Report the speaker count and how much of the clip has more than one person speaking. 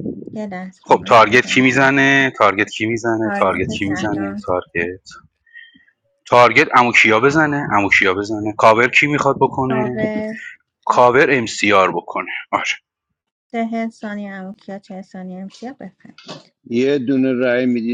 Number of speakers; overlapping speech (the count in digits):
3, about 15%